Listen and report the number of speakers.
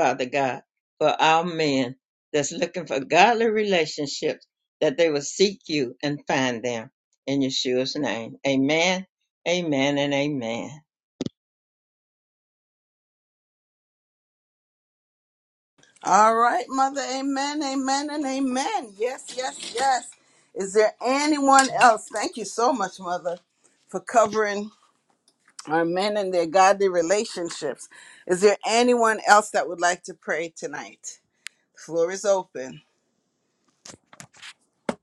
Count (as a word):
two